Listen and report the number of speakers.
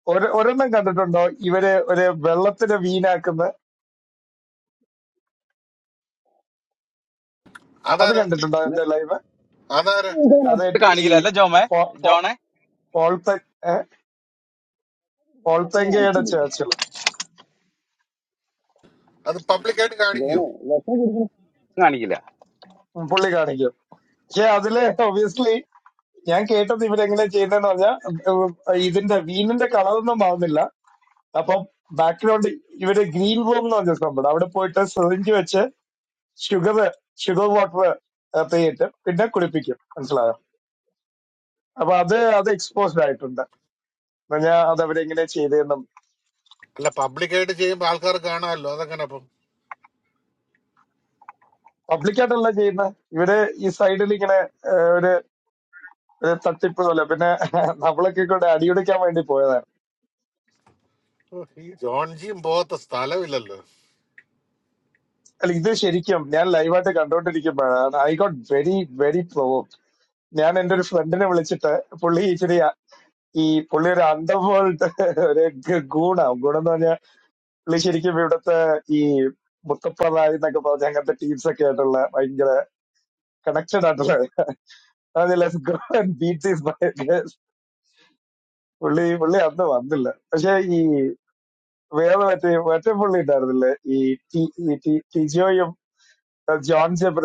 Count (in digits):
3